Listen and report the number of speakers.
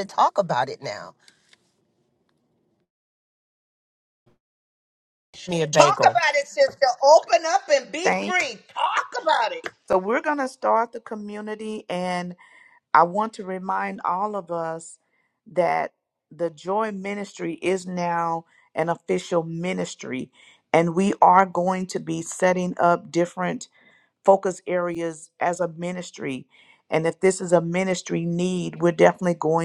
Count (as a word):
three